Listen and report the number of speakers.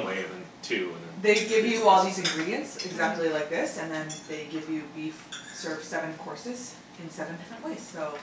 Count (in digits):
2